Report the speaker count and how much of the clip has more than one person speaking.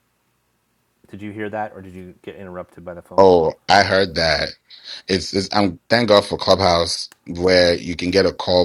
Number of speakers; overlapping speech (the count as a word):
two, about 4%